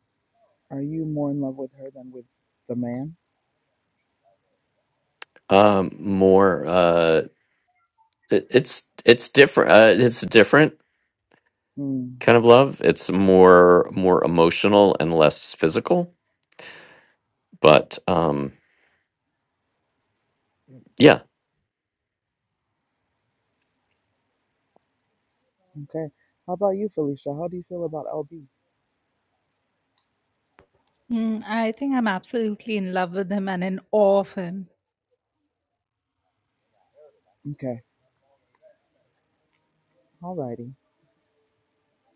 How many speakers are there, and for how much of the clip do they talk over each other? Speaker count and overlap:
3, no overlap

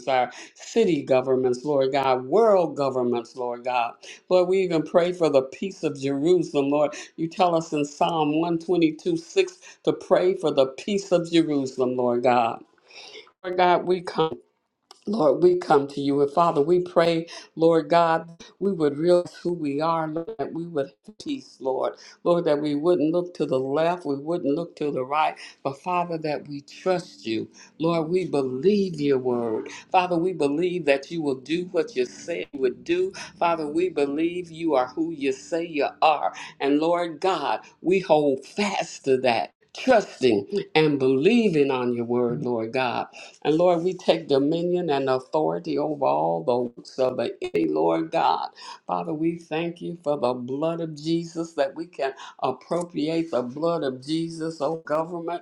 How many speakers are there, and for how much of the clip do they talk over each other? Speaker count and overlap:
1, no overlap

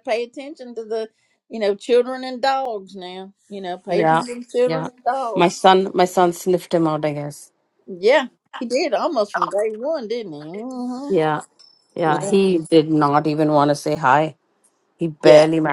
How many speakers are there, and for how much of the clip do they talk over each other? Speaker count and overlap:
2, about 8%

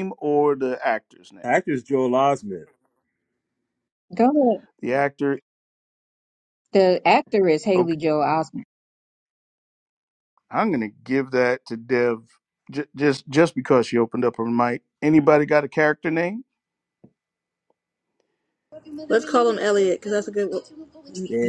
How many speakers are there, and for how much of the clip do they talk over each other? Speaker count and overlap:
4, about 2%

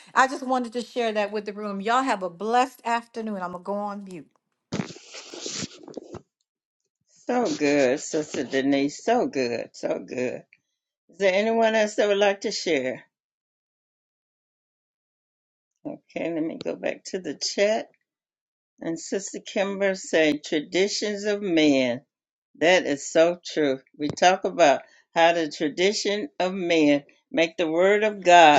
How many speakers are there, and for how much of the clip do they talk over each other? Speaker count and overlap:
2, no overlap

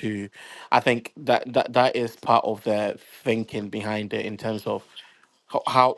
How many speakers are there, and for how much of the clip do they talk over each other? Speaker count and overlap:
1, no overlap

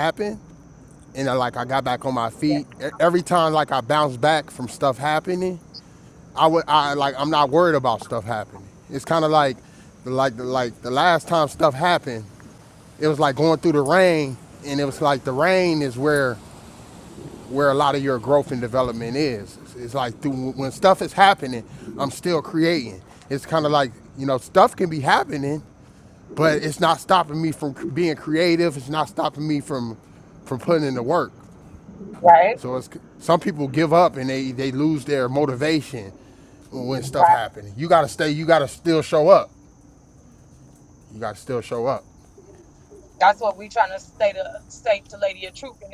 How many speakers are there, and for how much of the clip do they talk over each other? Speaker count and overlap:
2, about 1%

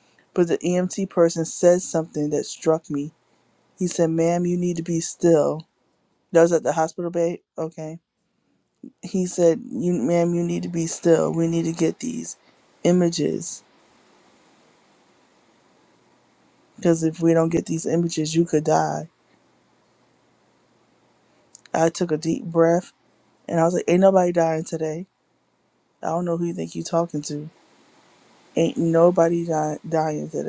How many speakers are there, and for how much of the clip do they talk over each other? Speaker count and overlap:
1, no overlap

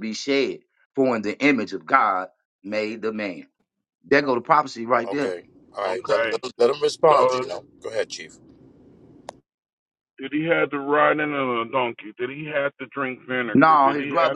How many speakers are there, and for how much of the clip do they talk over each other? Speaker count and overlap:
3, about 12%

